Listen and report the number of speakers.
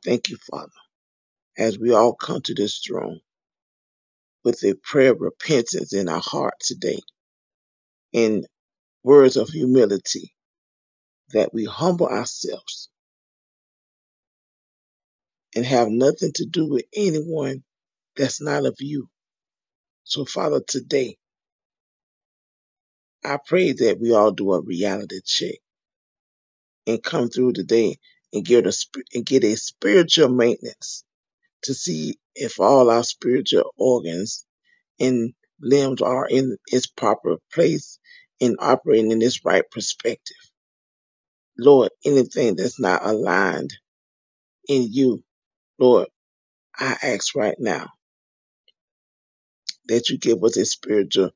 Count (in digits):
1